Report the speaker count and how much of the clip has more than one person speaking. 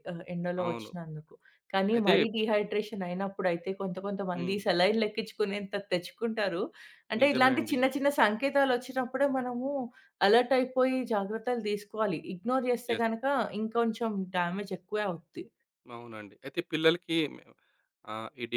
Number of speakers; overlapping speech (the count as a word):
two, about 8%